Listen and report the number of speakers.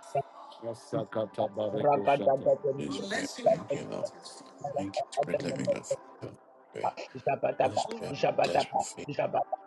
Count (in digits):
3